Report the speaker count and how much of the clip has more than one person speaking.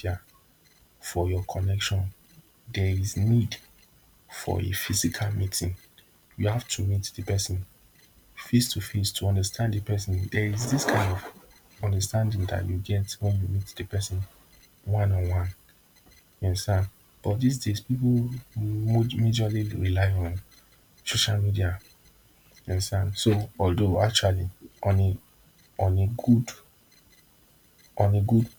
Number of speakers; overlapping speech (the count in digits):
1, no overlap